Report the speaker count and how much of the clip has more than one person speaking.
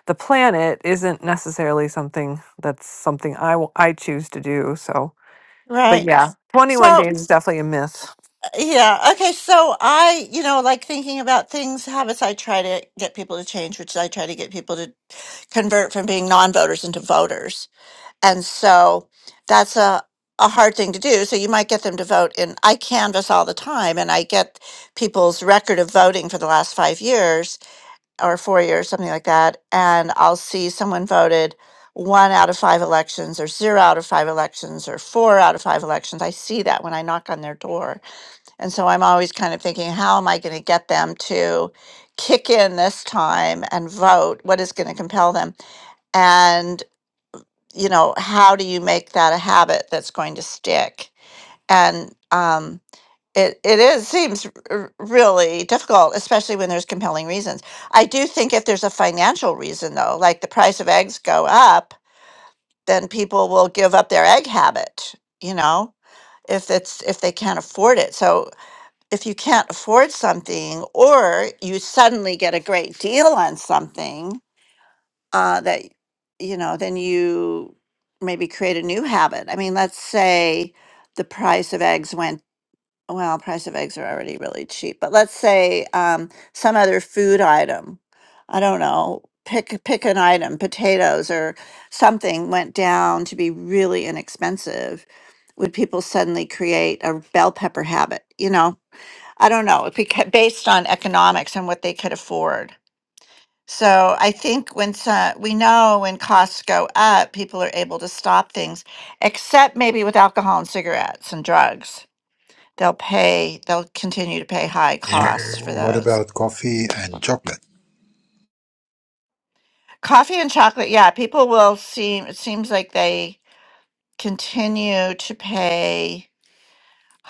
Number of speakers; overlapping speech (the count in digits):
3, about 1%